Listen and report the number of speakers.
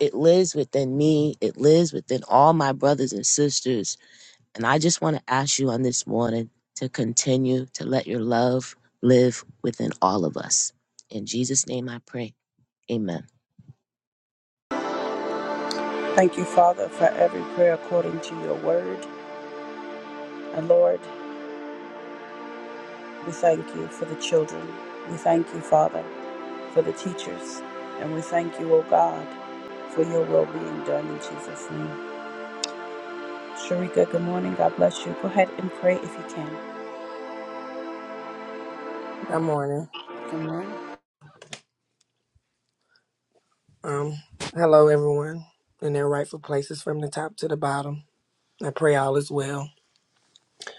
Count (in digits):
3